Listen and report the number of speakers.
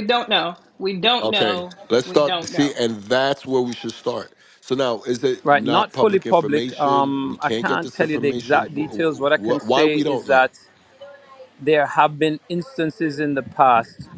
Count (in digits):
3